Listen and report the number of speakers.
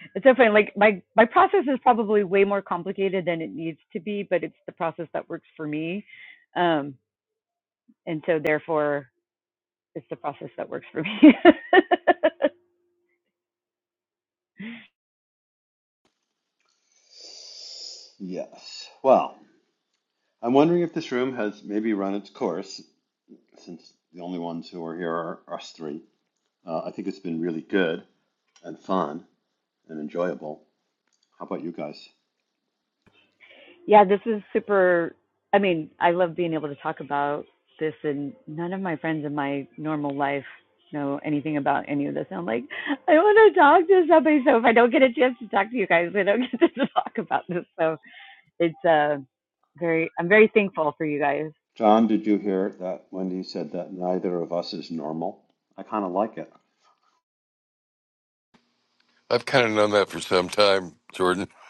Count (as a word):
three